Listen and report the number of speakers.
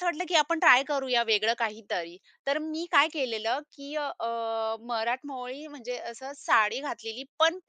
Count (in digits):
1